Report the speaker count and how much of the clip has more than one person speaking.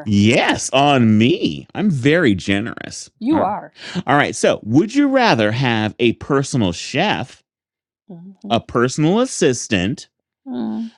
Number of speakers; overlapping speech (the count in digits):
2, about 2%